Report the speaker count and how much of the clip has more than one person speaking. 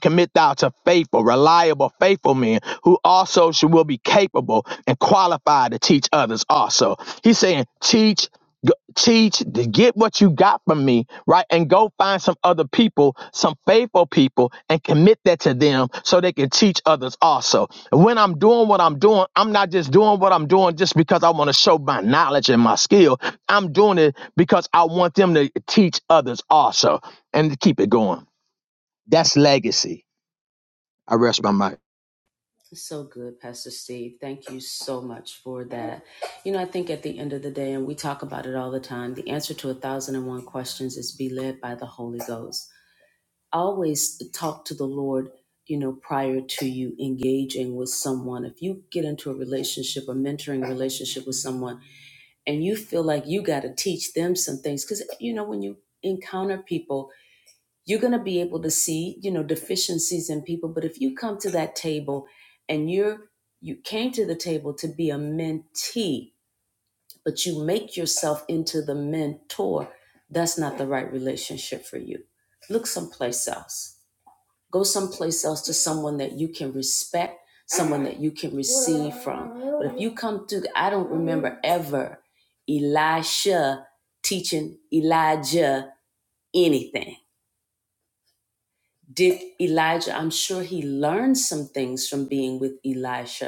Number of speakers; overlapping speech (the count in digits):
2, no overlap